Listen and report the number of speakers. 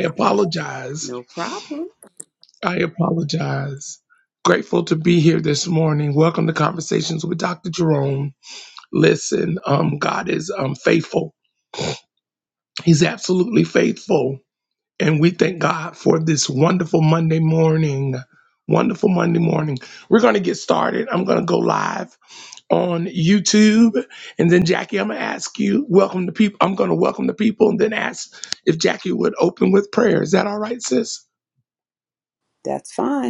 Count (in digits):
2